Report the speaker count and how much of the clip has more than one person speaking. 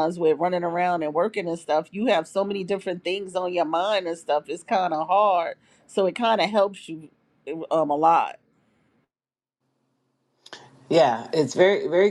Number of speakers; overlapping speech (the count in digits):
2, no overlap